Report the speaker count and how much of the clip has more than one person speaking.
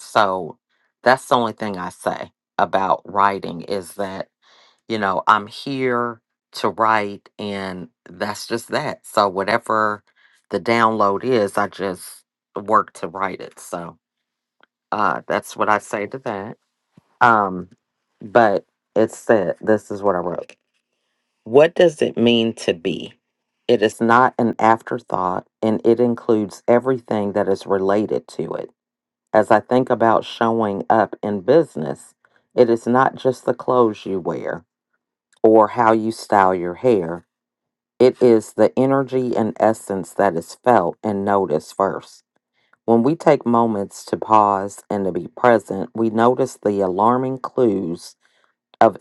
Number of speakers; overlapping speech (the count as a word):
one, no overlap